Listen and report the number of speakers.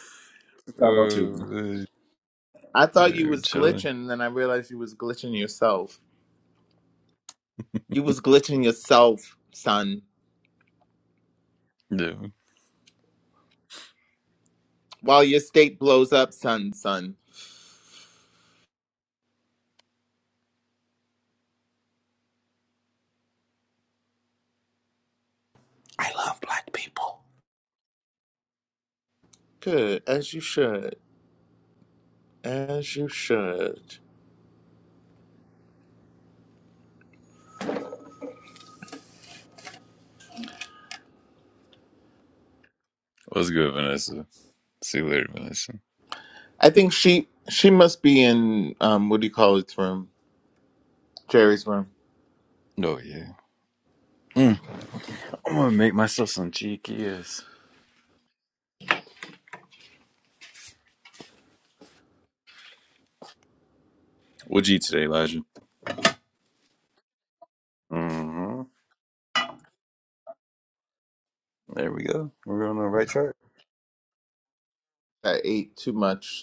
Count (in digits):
3